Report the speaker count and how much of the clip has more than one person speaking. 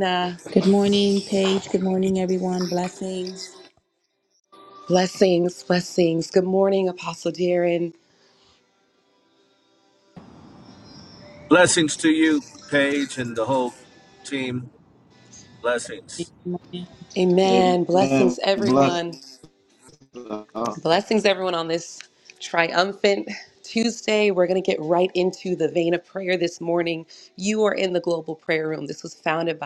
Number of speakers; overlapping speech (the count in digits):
4, about 5%